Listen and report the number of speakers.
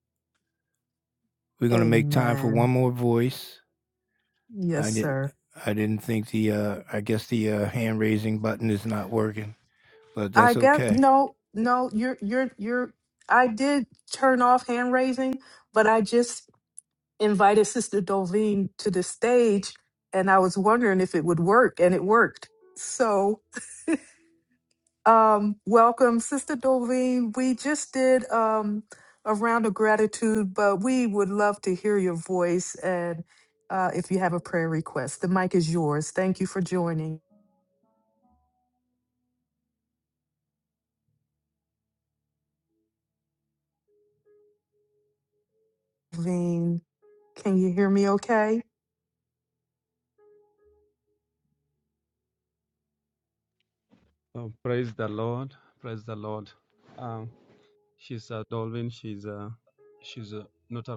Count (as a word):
three